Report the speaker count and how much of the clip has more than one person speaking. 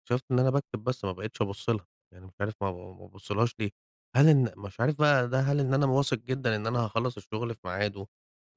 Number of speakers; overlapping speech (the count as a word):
one, no overlap